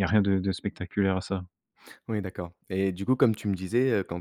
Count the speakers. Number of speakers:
two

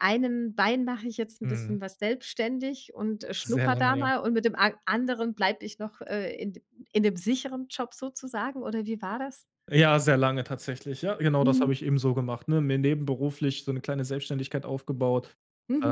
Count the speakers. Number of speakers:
two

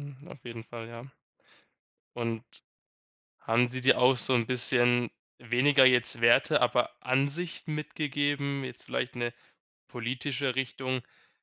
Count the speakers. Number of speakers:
one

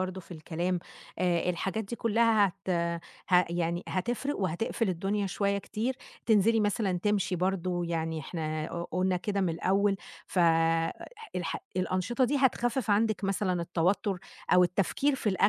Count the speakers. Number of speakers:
one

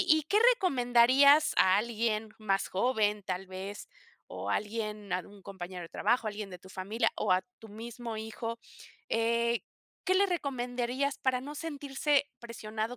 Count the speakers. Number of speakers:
one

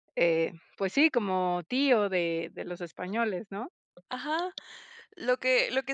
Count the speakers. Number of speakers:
two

